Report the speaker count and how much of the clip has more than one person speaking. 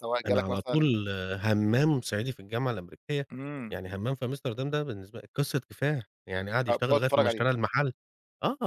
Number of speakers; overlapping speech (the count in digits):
2, about 16%